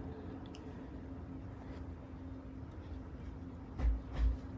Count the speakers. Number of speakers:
zero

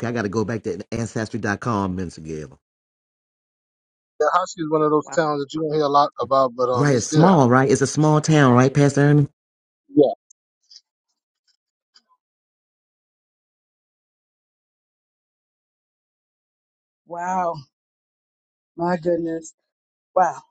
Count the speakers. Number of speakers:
three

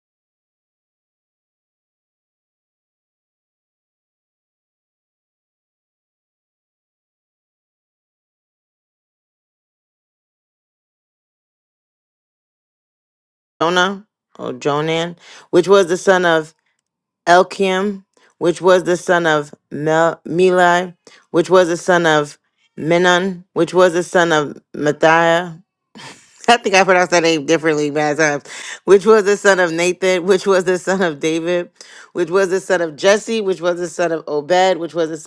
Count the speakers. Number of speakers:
one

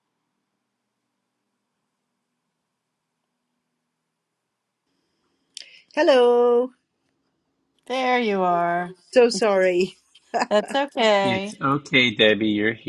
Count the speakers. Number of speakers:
three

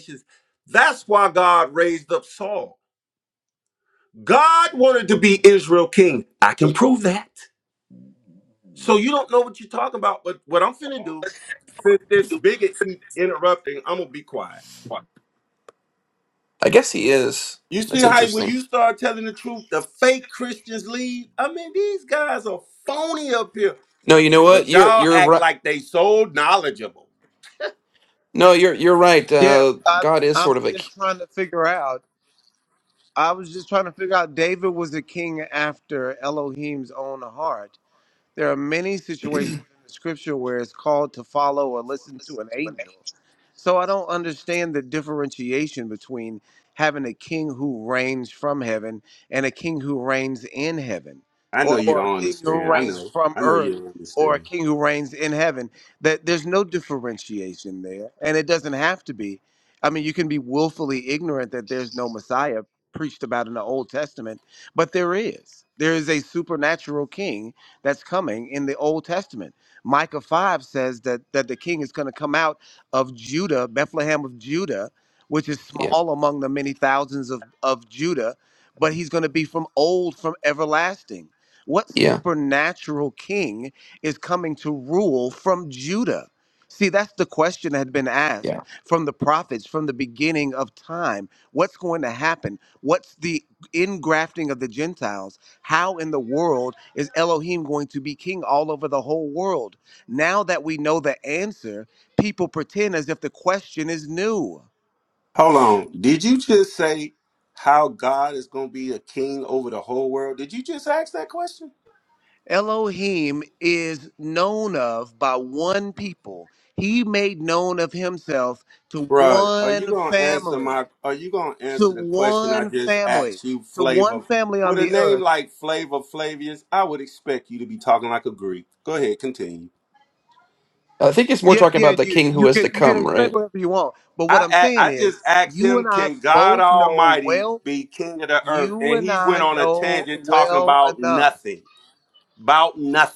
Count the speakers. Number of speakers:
three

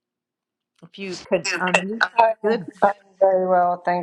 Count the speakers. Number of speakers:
two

